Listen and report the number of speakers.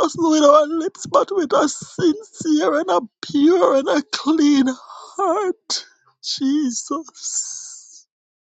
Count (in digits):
1